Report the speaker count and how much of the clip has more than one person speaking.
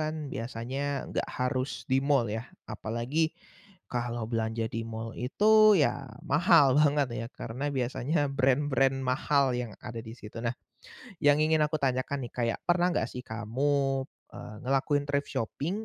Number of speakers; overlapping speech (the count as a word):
one, no overlap